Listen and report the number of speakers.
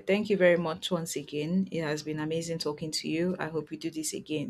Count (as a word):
one